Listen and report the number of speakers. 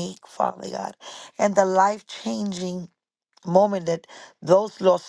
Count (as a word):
one